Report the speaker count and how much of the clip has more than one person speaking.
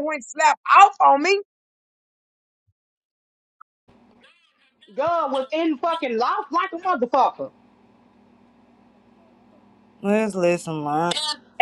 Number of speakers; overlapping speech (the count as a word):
three, no overlap